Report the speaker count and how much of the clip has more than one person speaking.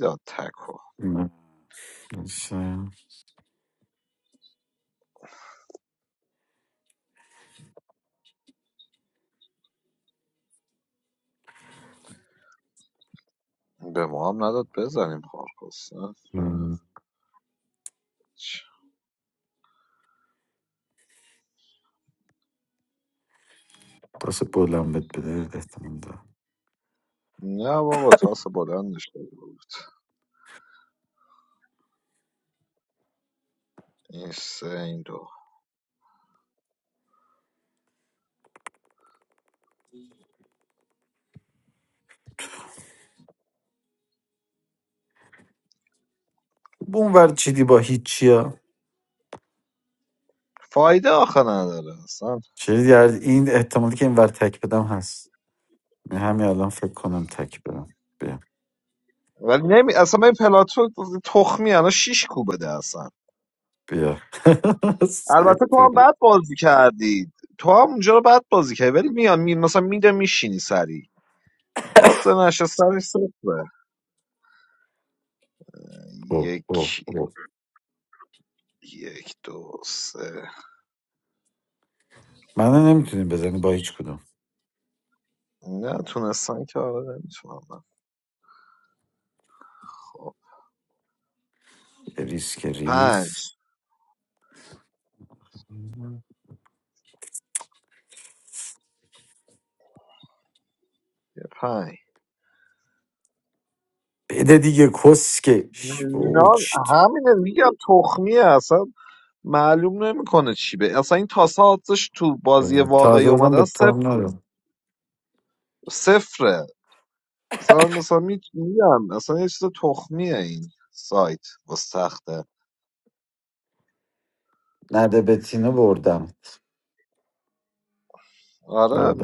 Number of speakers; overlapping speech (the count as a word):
two, about 3%